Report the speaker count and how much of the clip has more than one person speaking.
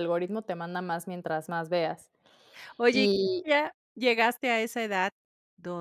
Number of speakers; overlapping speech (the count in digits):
2, about 3%